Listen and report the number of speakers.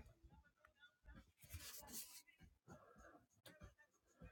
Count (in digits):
0